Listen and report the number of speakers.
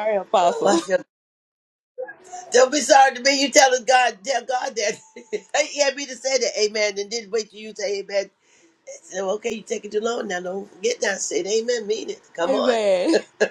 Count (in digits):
2